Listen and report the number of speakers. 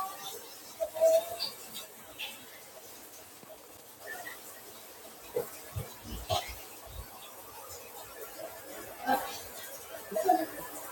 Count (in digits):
0